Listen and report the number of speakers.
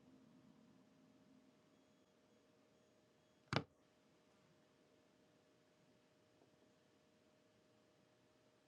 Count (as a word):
zero